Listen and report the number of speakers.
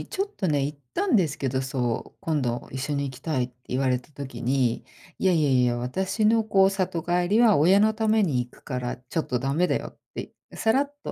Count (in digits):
1